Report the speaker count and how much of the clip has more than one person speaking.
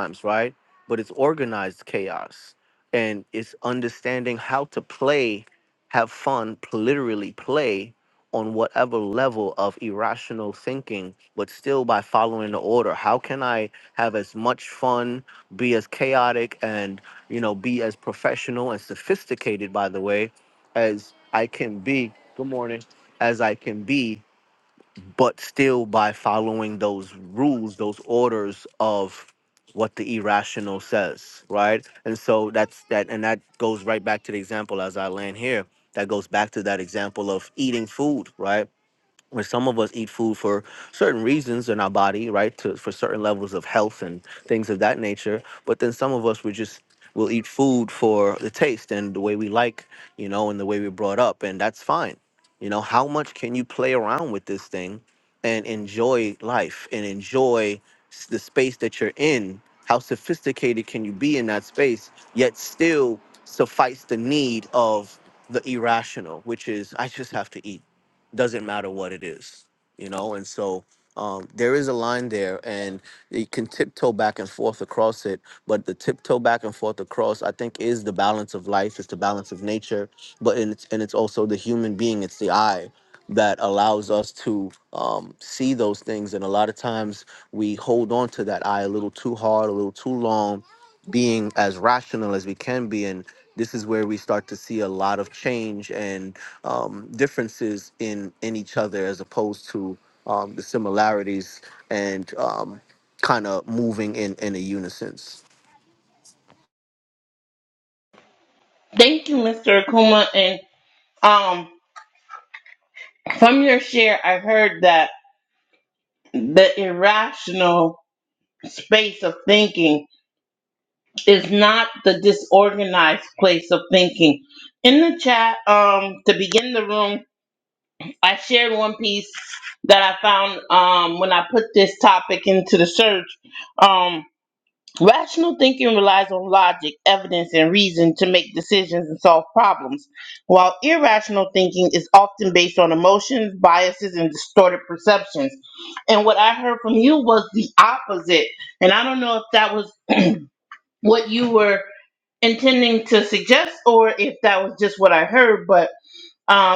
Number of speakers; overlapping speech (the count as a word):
two, no overlap